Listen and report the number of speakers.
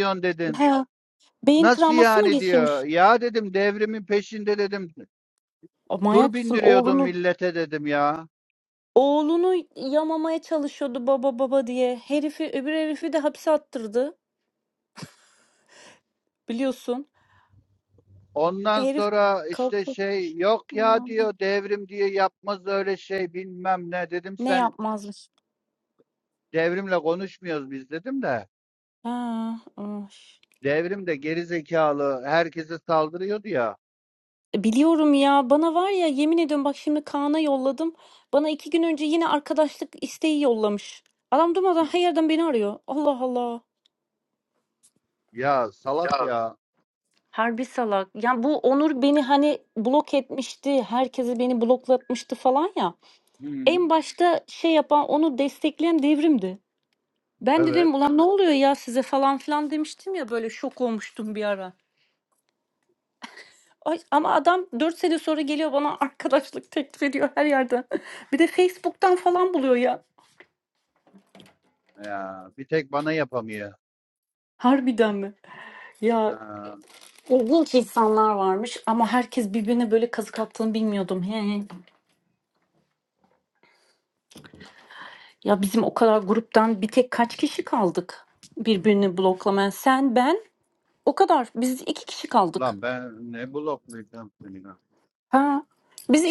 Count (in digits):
2